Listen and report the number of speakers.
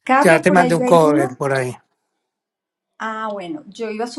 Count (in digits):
2